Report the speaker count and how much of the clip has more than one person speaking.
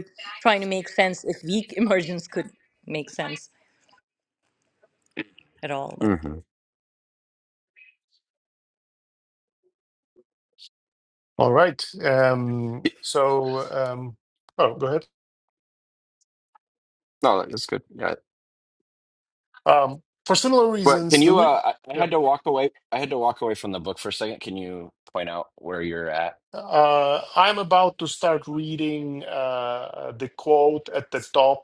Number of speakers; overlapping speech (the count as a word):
three, about 3%